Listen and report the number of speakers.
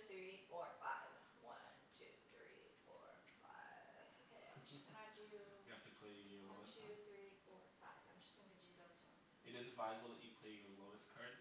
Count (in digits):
2